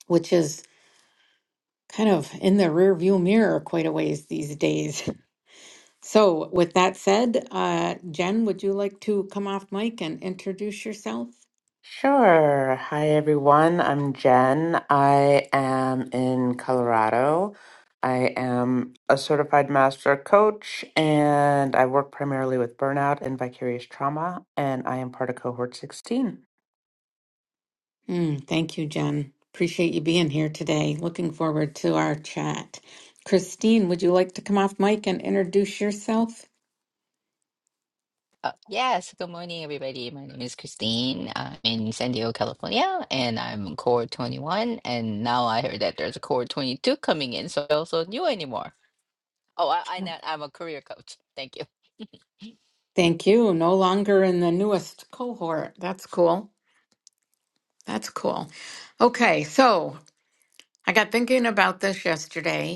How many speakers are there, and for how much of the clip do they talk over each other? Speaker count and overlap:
3, no overlap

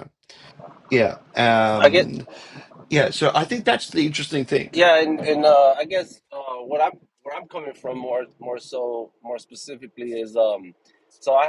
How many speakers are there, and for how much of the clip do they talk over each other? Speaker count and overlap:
2, about 4%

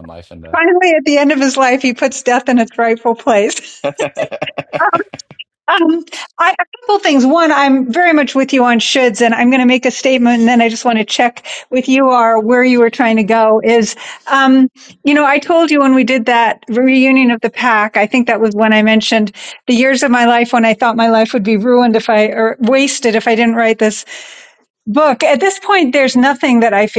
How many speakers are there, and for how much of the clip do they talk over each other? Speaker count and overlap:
2, no overlap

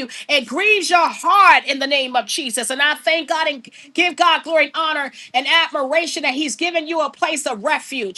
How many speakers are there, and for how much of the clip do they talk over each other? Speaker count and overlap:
1, no overlap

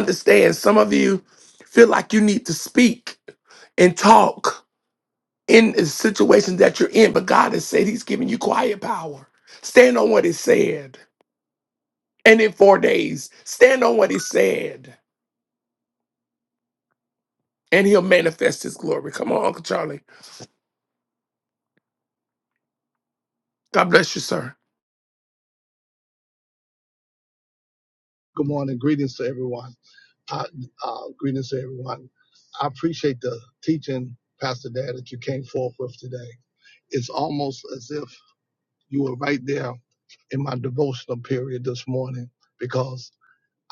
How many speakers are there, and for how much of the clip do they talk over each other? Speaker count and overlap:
2, no overlap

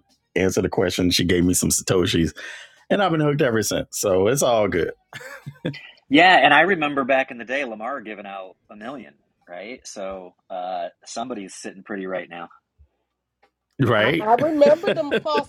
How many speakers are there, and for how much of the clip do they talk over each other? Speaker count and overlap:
3, about 2%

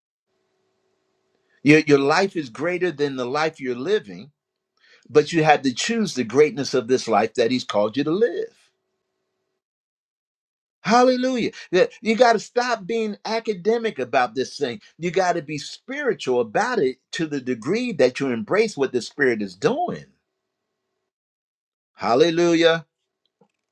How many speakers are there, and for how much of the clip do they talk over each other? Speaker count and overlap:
1, no overlap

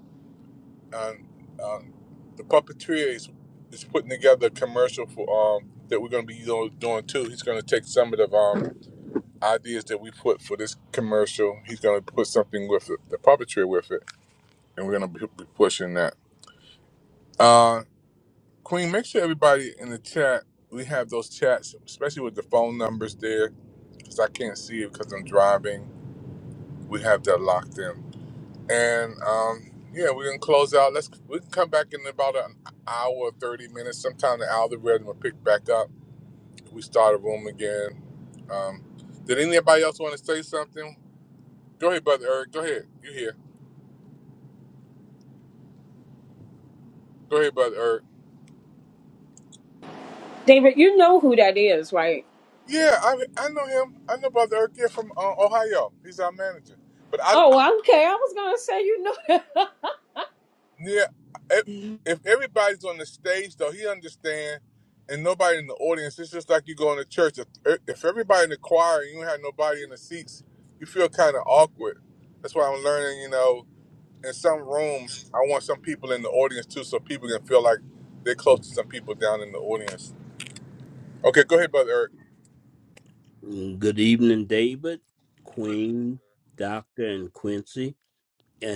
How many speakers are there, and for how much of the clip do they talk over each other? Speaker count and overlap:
3, under 1%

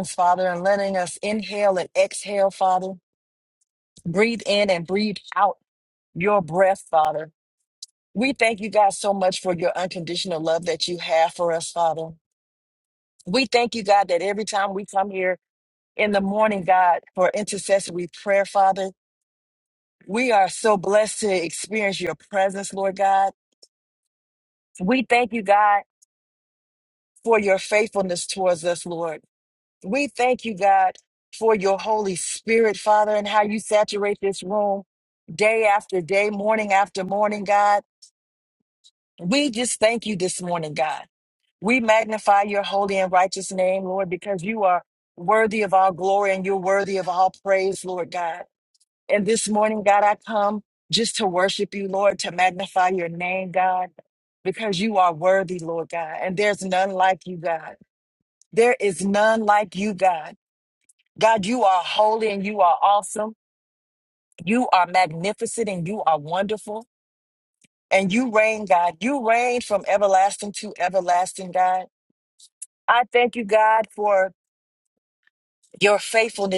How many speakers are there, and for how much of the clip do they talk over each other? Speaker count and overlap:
1, no overlap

